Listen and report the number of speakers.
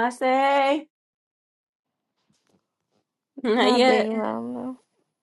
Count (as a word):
two